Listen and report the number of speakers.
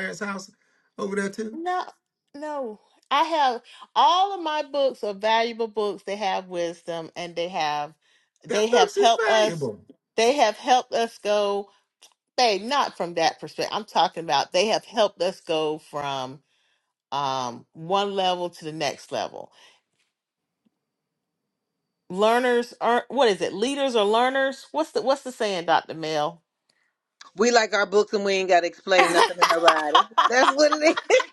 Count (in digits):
3